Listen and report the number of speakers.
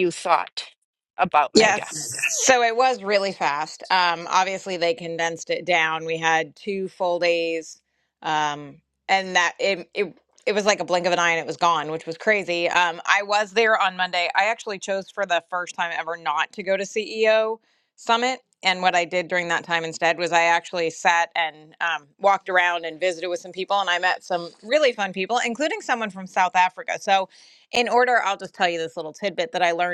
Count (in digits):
2